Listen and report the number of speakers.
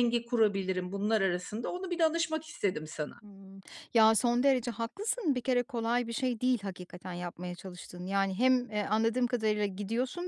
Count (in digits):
2